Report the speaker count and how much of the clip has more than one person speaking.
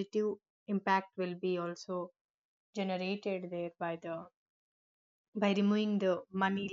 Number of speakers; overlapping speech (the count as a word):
one, no overlap